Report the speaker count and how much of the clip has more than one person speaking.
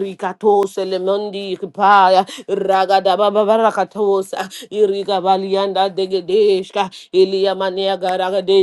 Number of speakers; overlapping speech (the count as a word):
one, no overlap